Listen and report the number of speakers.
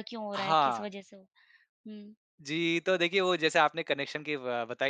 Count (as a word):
two